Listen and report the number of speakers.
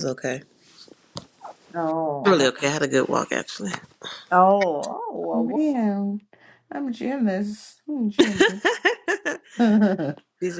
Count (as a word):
three